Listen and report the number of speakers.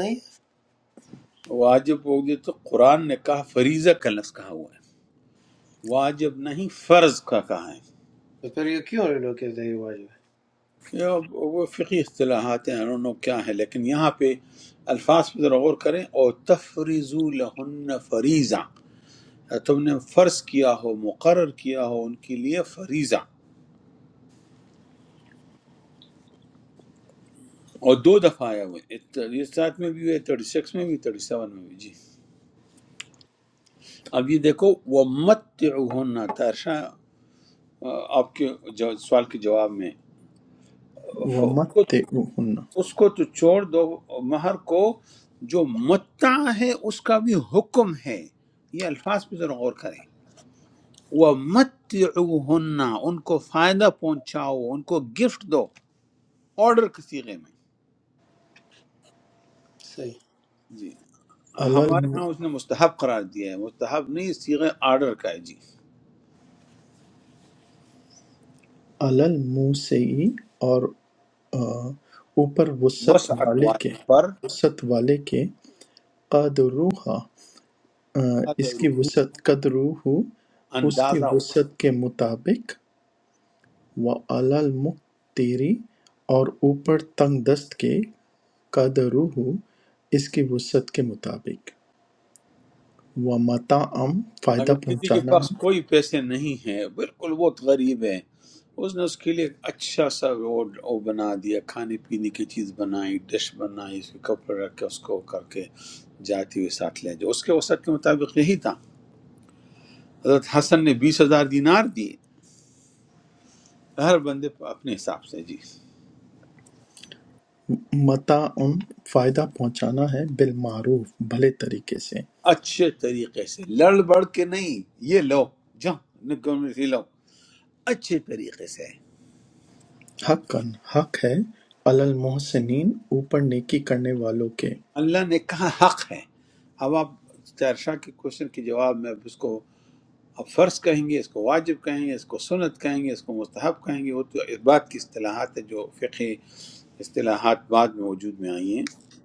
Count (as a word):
three